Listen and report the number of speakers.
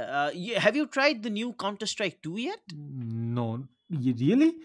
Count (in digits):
2